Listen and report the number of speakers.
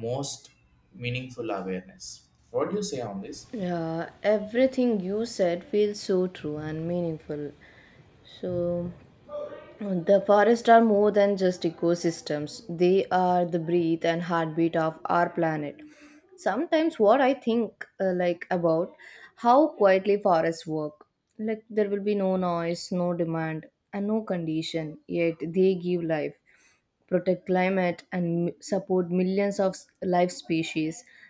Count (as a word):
two